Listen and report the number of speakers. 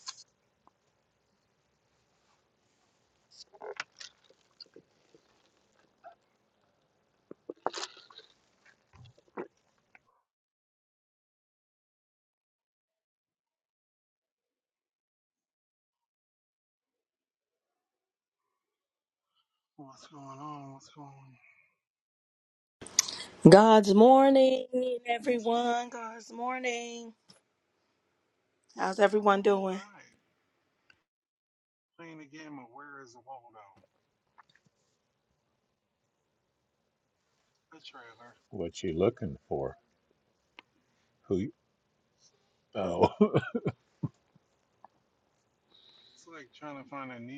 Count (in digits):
3